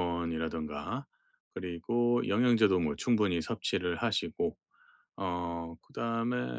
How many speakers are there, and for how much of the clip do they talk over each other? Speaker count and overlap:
1, no overlap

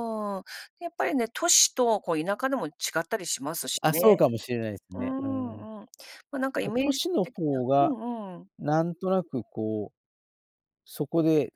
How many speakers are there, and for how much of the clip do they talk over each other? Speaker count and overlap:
2, about 16%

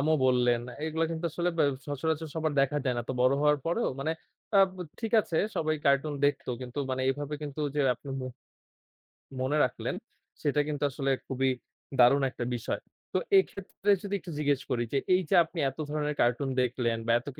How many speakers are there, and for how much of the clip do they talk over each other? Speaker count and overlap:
1, no overlap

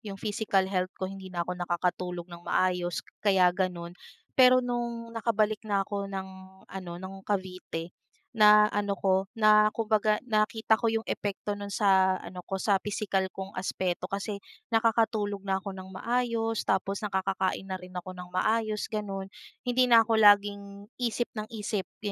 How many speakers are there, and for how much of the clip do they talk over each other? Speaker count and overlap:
1, no overlap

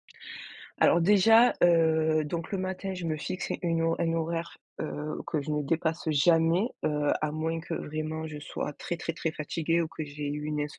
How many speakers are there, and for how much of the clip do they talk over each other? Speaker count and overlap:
1, no overlap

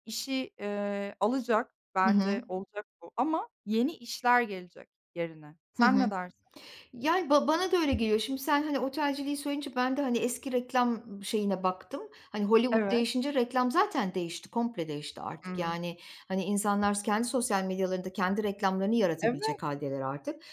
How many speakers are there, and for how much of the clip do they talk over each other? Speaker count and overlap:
2, about 8%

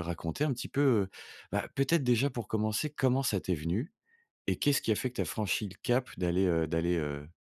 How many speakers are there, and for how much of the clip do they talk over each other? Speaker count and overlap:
1, no overlap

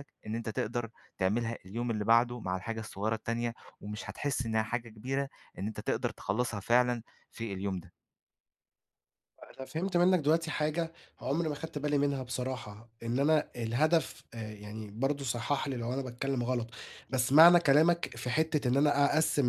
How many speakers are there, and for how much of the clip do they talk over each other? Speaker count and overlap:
2, no overlap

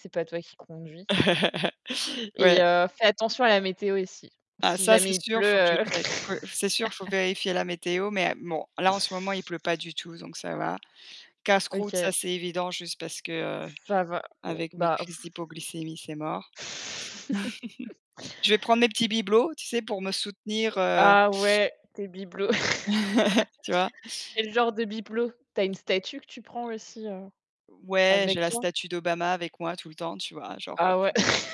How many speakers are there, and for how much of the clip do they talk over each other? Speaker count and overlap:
2, about 12%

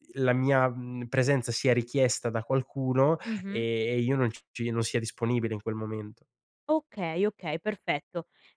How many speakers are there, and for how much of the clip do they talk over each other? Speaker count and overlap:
2, about 5%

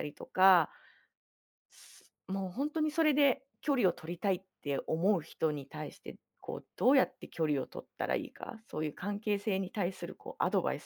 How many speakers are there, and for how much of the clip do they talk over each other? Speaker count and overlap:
1, no overlap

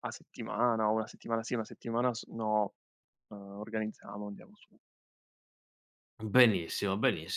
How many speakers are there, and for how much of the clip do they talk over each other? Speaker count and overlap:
2, no overlap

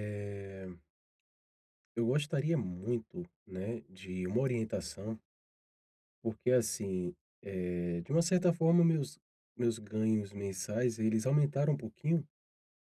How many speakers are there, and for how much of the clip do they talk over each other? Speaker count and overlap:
1, no overlap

